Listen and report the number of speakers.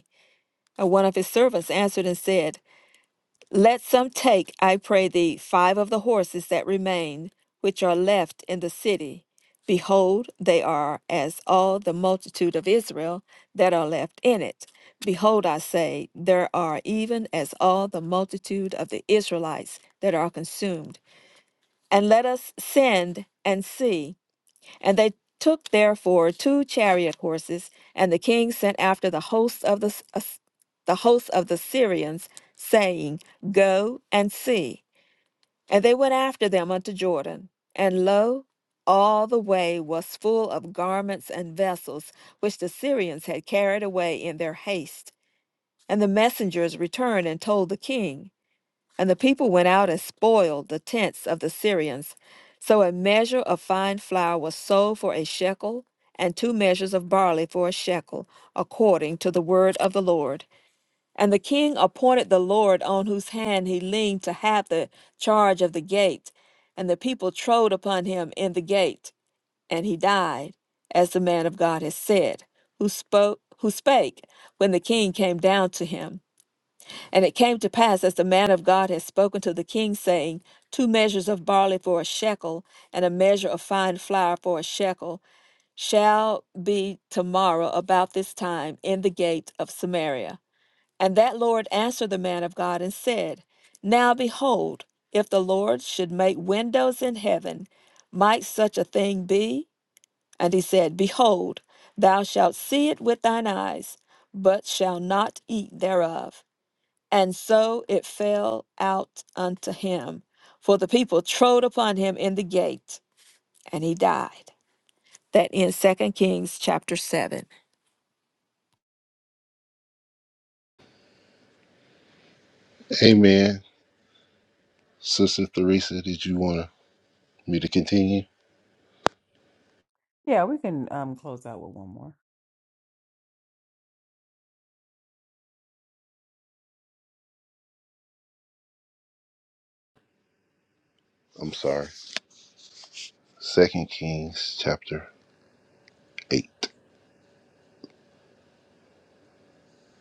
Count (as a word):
three